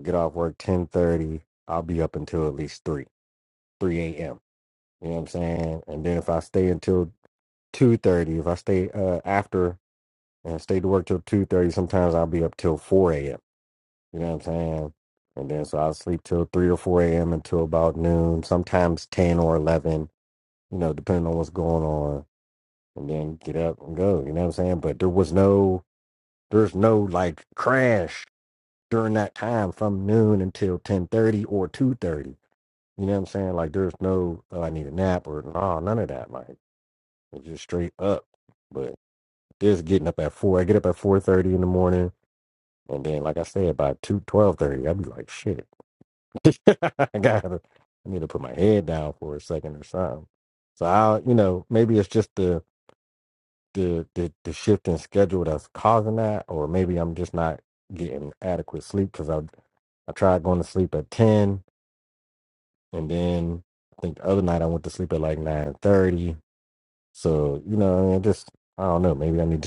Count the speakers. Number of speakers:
1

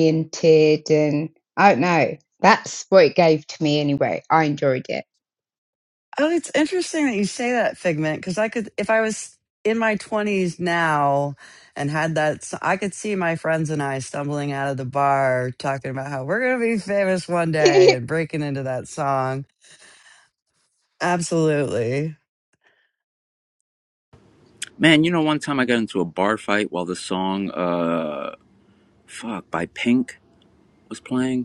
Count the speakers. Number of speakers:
3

